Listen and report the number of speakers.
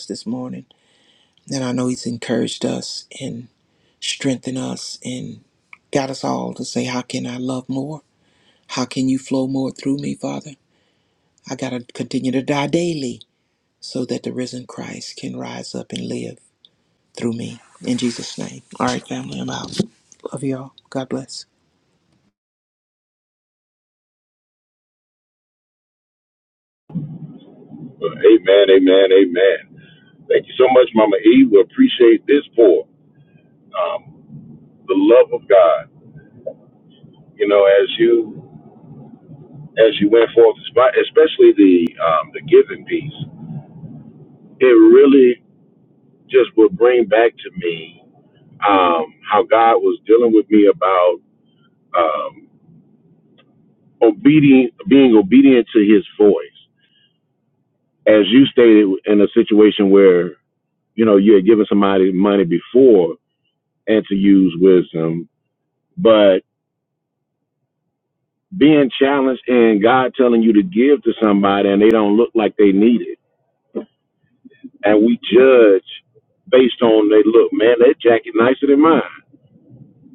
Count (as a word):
two